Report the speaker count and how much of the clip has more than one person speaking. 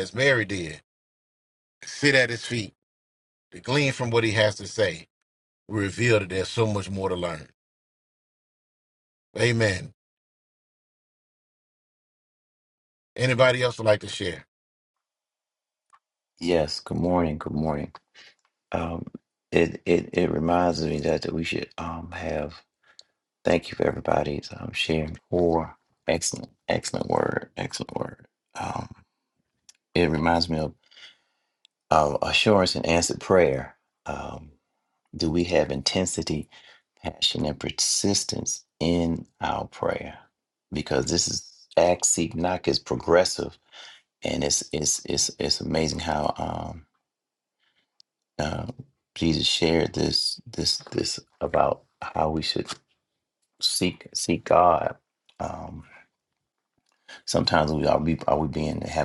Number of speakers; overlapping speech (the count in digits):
2, no overlap